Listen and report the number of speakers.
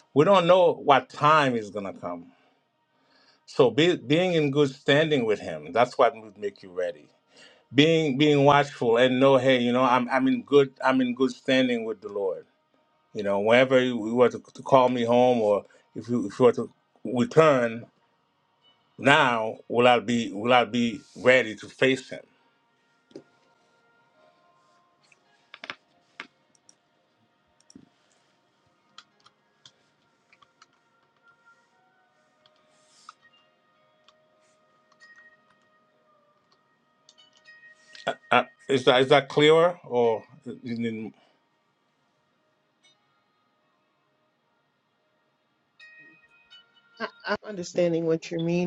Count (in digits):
2